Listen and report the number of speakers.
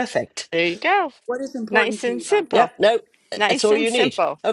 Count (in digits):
3